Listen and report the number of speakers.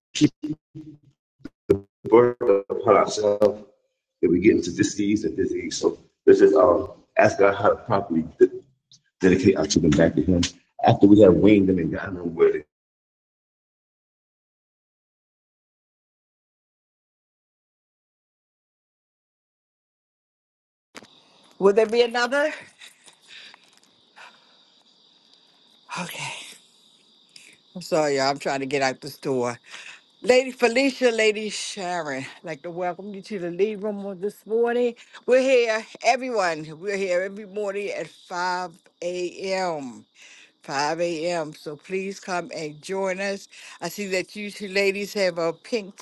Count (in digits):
2